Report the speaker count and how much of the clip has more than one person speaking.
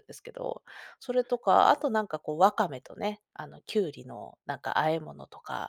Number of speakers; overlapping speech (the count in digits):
1, no overlap